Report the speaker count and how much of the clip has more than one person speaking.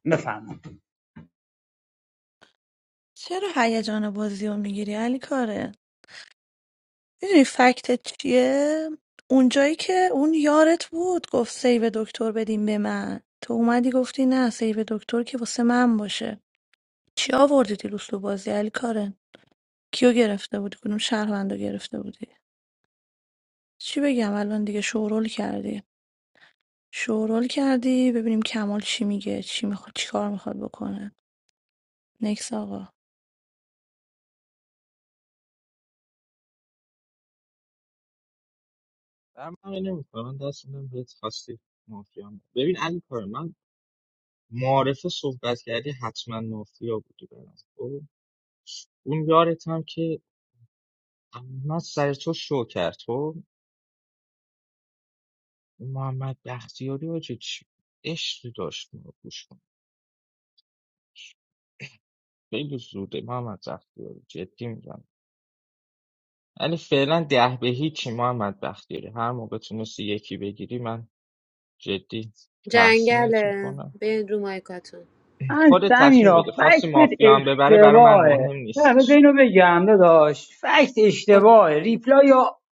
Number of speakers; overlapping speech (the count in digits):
4, about 5%